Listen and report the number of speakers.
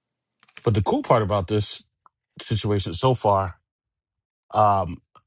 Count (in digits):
1